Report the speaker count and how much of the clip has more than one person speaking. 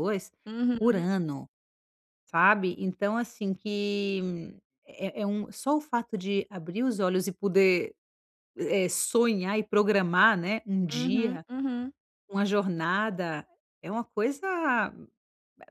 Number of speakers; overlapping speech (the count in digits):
2, about 5%